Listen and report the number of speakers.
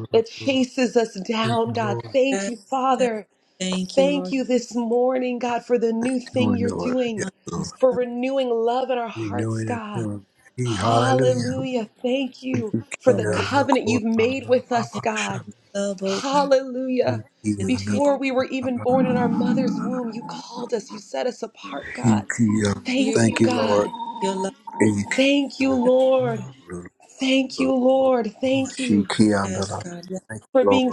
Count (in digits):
3